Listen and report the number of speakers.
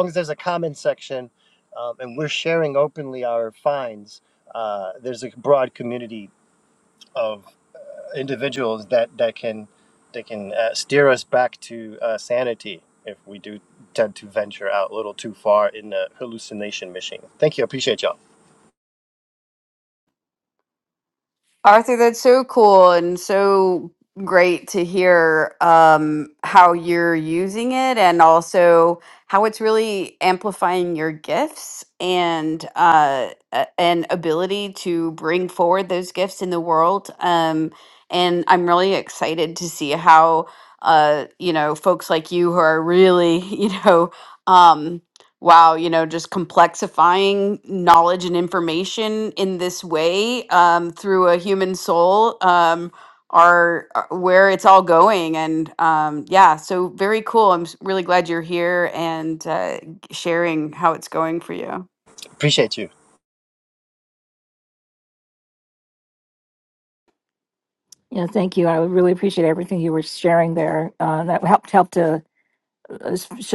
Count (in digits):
3